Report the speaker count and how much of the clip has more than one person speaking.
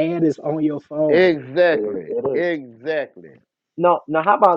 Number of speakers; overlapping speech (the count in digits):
3, about 19%